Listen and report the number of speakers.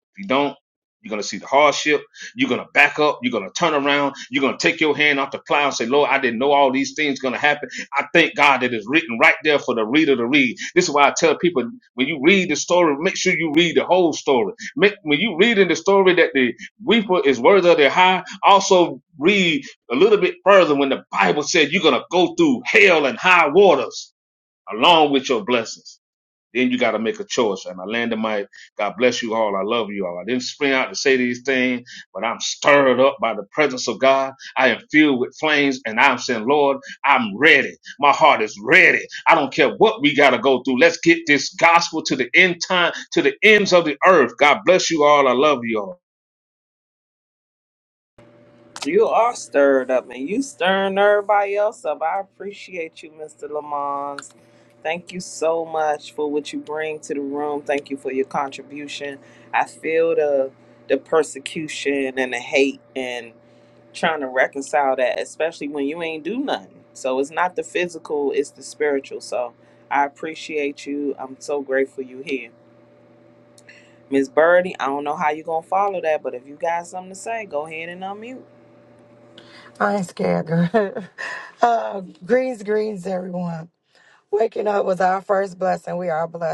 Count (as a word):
three